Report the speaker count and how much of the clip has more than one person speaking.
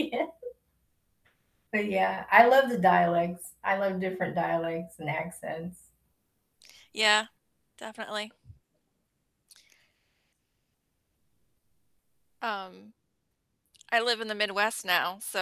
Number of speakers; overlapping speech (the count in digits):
2, no overlap